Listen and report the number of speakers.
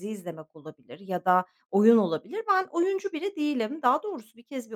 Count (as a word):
one